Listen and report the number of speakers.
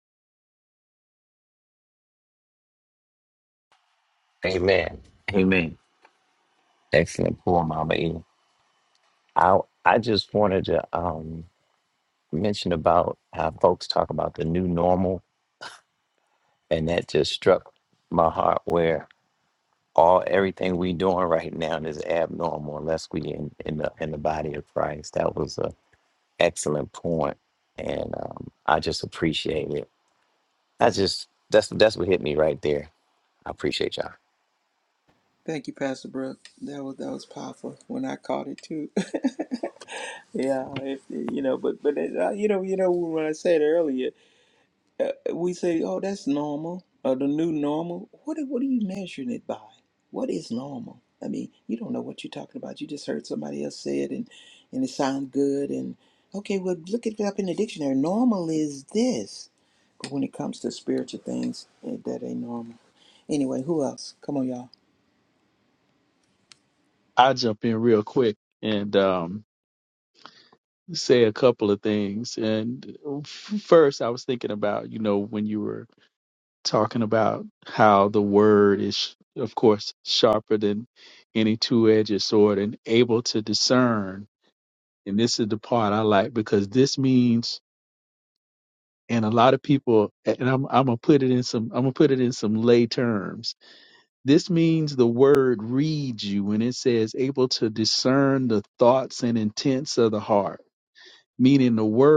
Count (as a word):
three